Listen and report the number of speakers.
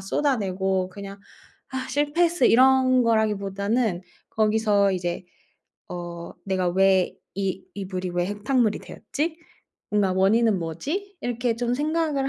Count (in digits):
1